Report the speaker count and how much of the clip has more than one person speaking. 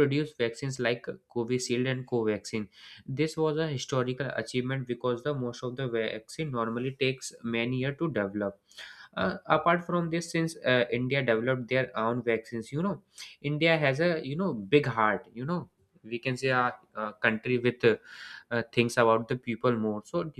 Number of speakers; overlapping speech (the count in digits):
1, no overlap